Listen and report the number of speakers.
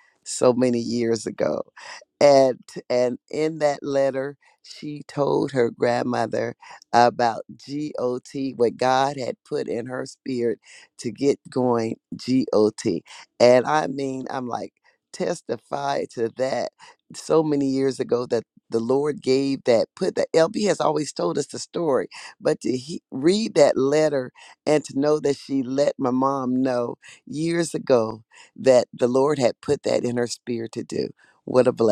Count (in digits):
1